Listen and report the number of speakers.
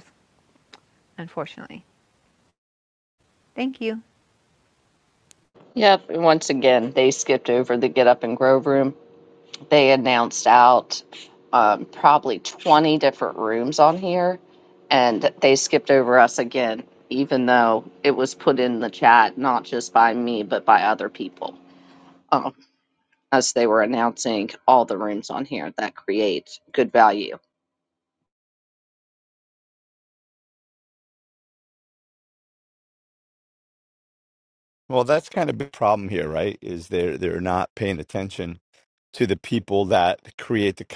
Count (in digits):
3